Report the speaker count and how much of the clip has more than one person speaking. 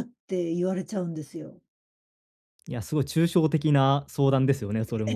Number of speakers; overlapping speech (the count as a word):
two, about 4%